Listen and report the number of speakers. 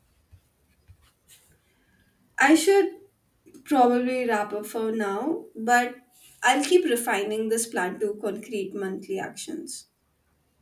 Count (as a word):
one